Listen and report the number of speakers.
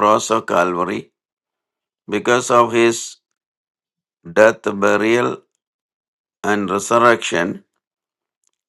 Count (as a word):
one